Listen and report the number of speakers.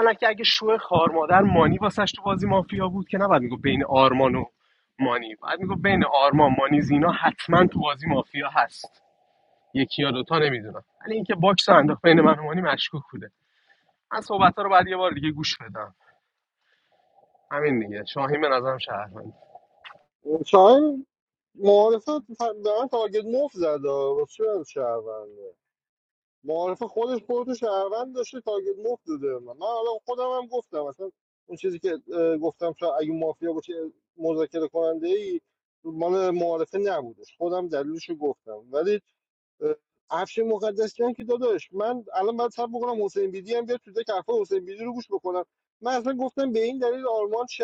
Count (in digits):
2